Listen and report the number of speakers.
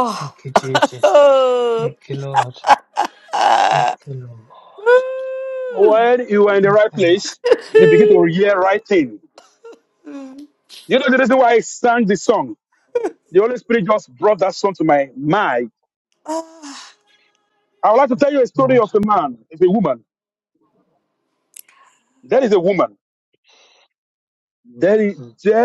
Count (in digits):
3